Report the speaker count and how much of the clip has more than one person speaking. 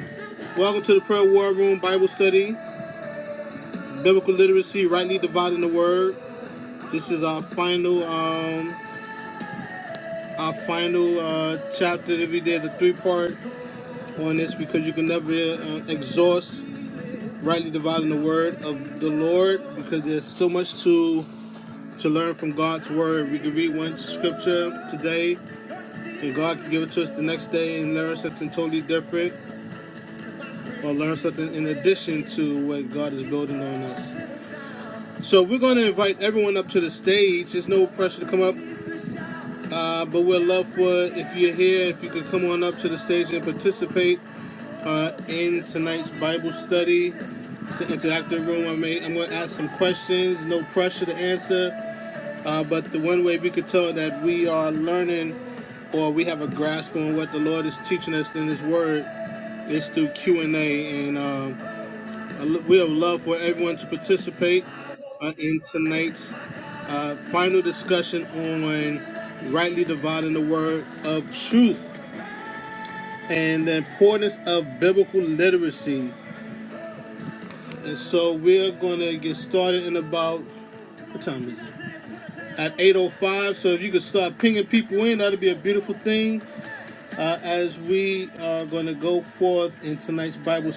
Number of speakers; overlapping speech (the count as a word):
one, no overlap